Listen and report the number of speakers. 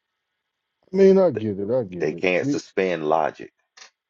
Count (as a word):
two